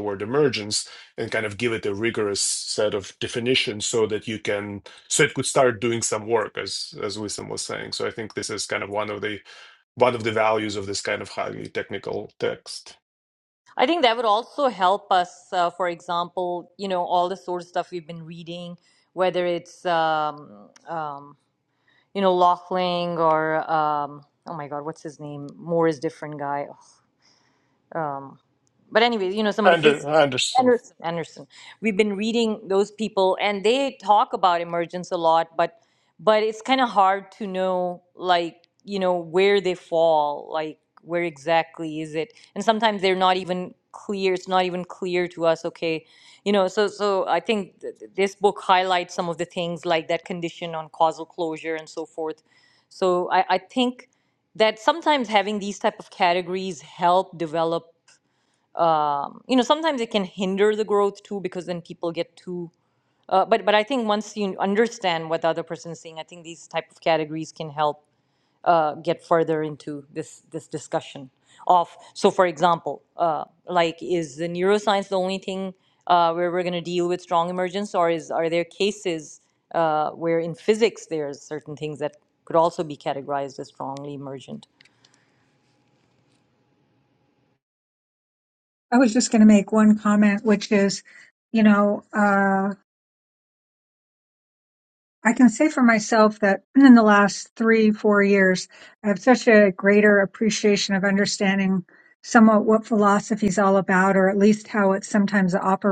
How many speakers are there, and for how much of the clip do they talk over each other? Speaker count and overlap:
3, under 1%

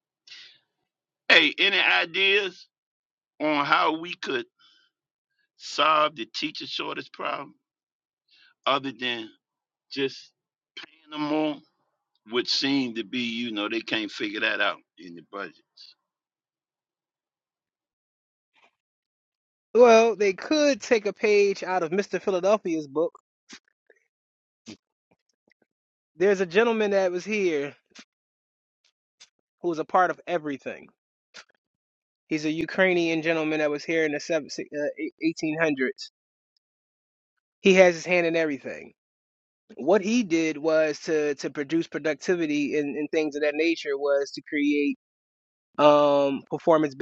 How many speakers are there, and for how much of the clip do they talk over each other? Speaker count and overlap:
2, no overlap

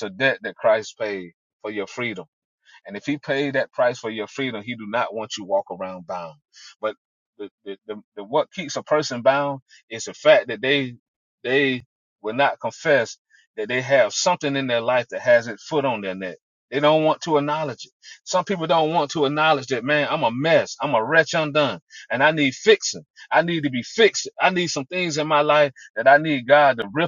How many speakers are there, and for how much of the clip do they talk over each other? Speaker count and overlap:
1, no overlap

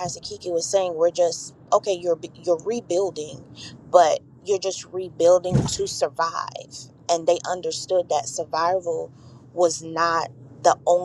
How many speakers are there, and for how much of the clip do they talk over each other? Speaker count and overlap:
1, no overlap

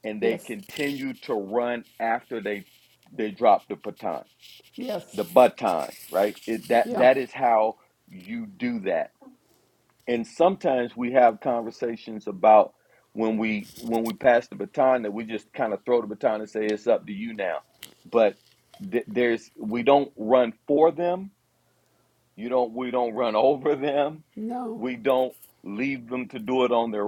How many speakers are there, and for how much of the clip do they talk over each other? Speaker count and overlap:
2, about 2%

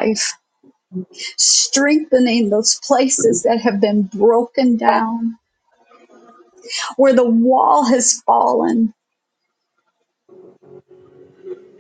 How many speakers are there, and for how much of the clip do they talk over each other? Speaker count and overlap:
1, no overlap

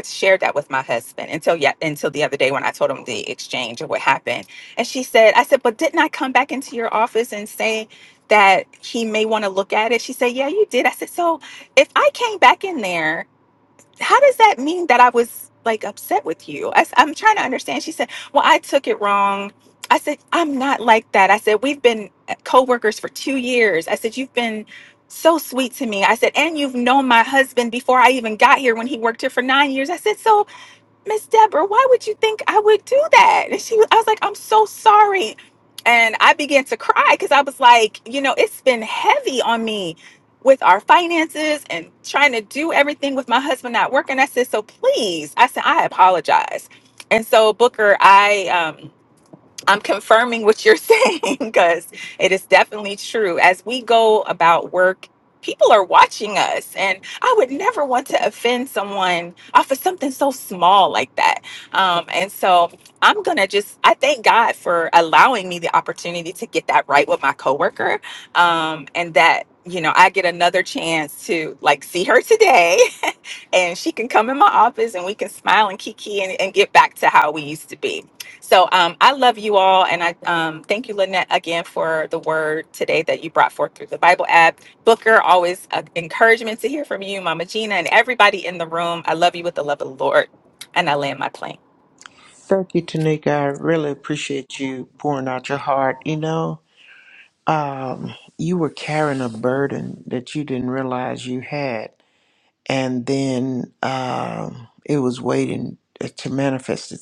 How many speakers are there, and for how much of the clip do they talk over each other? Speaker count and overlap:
2, no overlap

